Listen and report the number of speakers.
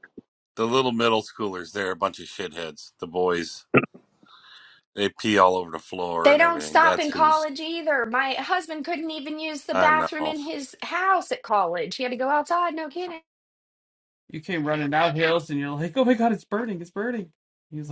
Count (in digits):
3